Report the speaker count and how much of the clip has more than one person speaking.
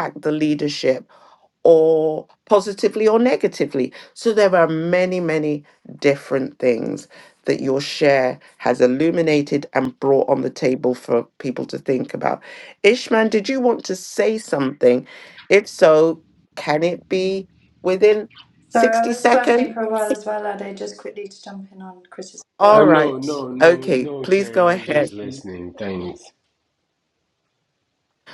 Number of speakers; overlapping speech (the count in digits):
3, about 10%